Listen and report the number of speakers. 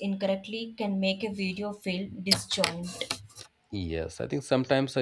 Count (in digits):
2